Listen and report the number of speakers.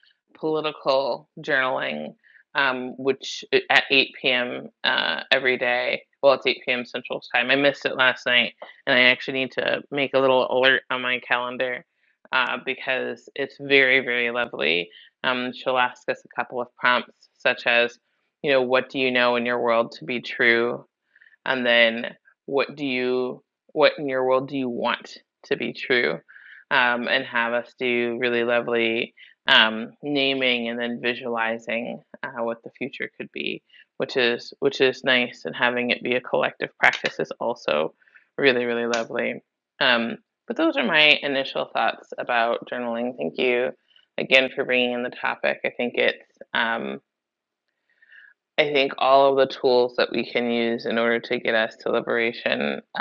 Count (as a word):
one